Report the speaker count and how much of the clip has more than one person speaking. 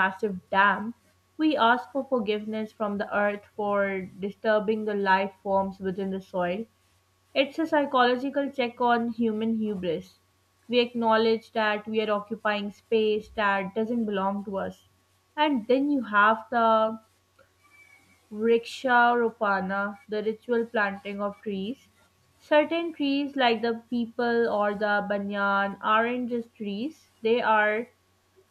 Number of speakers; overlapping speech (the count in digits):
1, no overlap